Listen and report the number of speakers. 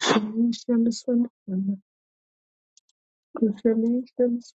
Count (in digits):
1